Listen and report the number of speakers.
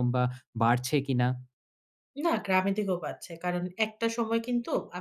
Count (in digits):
2